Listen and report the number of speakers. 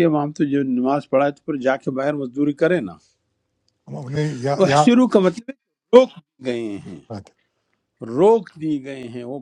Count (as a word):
two